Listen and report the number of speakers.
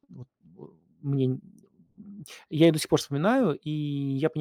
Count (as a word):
one